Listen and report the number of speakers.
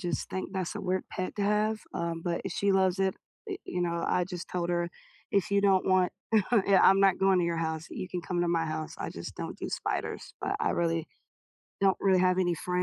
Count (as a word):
one